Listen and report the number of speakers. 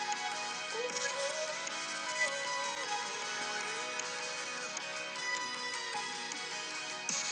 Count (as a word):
zero